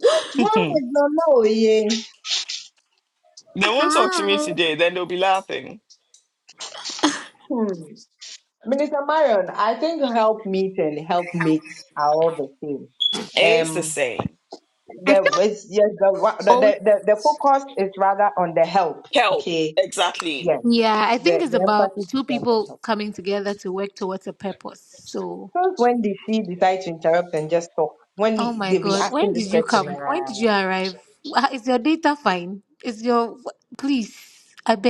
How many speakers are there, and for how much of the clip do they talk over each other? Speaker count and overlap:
3, about 17%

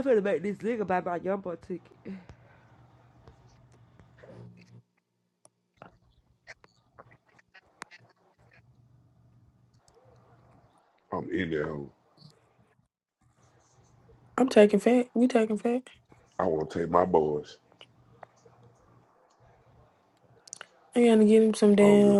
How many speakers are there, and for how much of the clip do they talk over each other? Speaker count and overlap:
3, about 2%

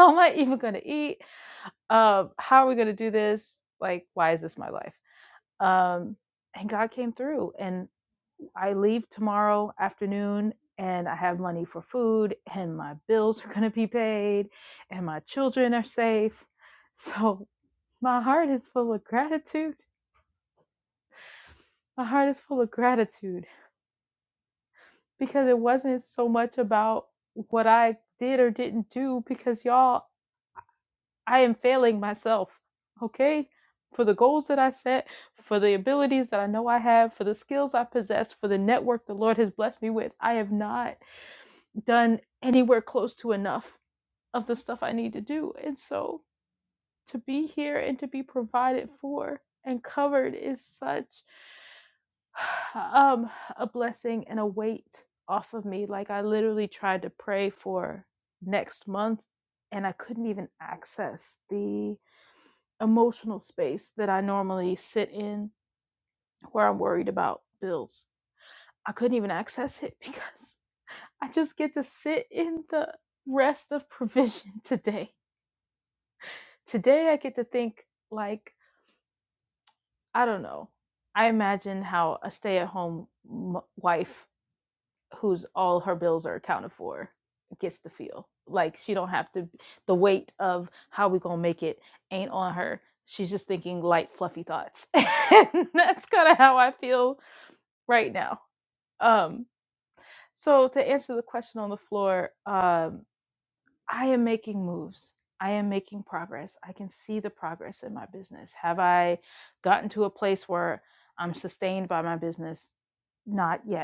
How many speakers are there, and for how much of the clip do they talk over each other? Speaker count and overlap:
1, no overlap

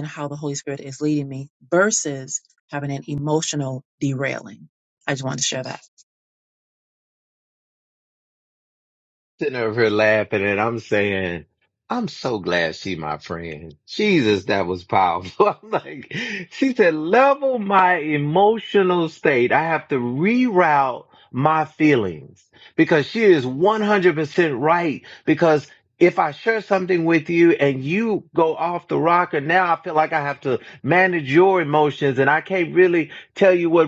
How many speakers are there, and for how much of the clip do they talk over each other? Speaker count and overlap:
2, no overlap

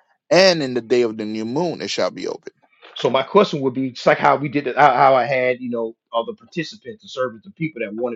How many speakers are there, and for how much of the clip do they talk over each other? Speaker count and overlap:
2, no overlap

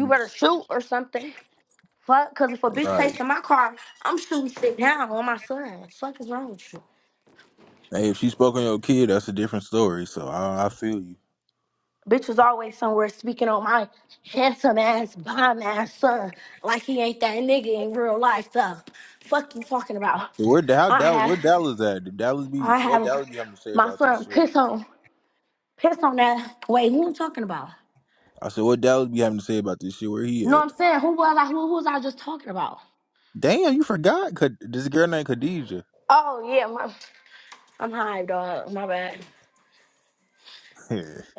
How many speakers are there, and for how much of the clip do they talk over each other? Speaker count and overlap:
2, about 6%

